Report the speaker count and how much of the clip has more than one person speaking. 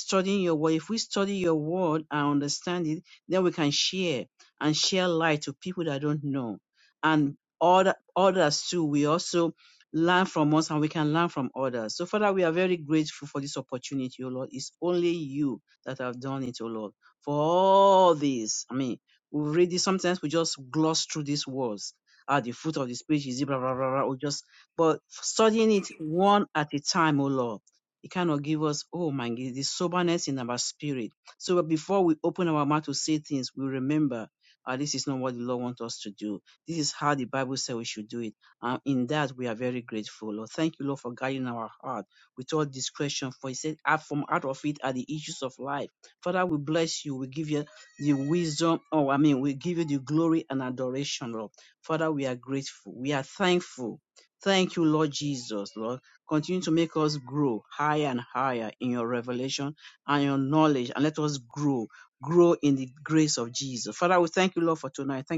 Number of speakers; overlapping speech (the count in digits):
1, no overlap